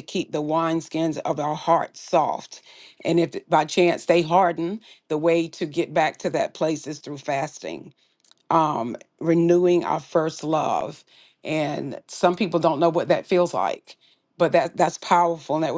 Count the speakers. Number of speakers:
1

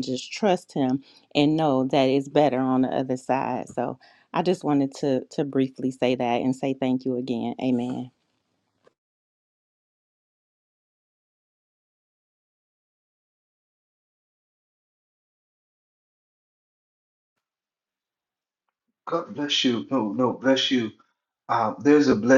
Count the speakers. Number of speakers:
2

